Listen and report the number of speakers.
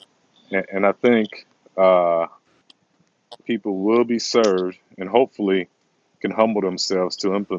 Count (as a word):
one